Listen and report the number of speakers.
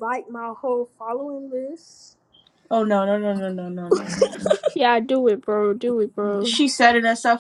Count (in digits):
3